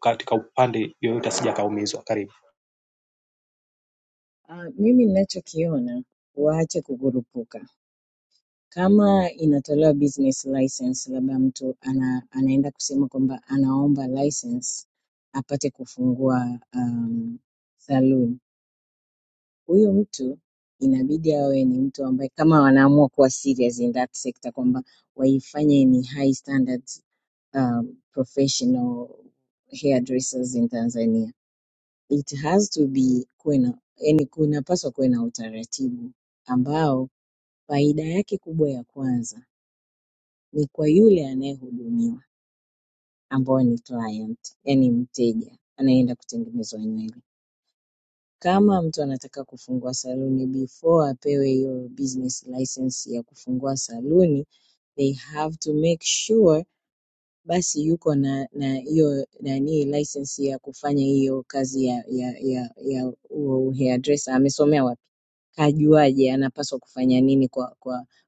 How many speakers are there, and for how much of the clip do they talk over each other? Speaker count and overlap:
2, no overlap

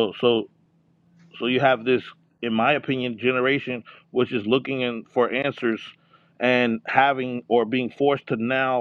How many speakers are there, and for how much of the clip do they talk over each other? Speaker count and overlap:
1, no overlap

